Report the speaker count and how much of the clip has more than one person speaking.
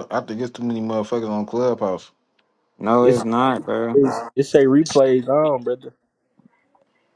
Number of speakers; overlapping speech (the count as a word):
three, about 4%